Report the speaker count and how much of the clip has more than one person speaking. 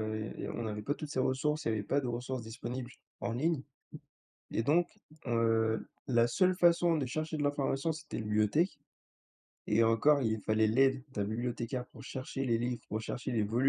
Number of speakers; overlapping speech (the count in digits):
1, no overlap